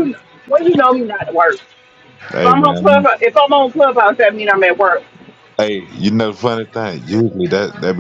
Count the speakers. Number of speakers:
2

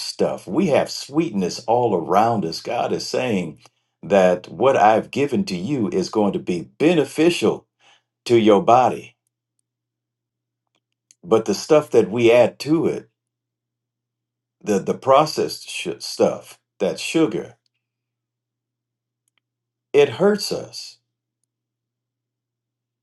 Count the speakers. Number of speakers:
1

